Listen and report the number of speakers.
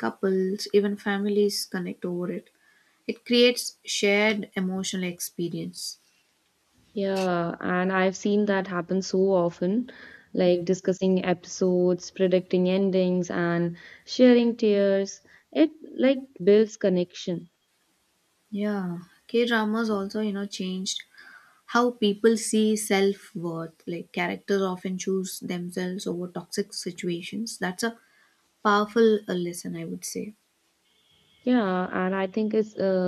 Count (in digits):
2